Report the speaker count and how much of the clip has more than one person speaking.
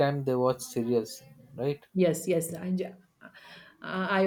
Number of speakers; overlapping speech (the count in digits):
2, no overlap